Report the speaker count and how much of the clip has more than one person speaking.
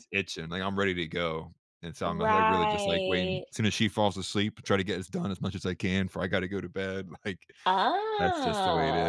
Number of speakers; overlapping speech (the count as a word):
two, about 18%